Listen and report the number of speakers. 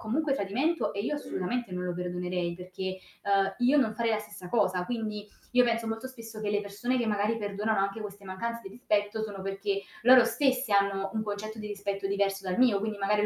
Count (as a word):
one